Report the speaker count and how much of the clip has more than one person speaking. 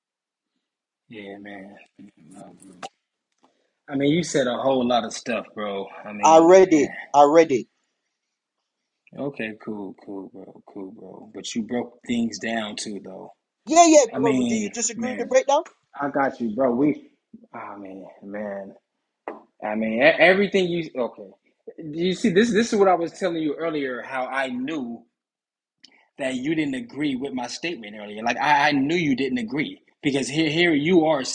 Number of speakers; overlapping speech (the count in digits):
2, about 6%